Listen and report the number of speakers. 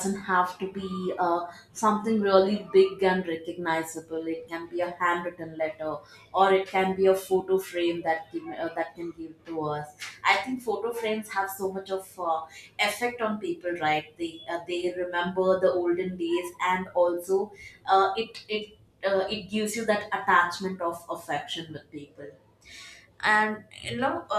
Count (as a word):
one